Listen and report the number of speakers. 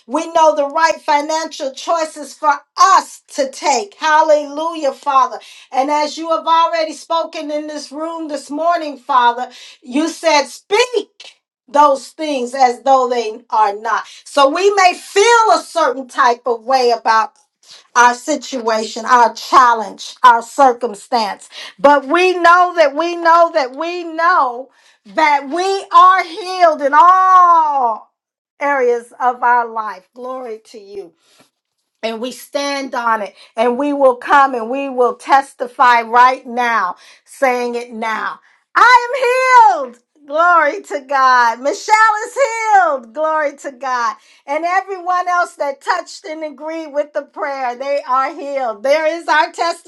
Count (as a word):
one